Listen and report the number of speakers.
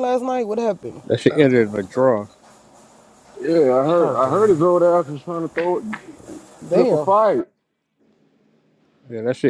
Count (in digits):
3